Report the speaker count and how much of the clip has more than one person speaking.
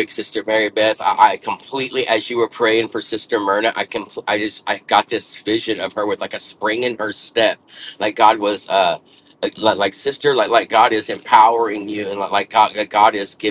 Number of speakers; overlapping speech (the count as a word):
one, no overlap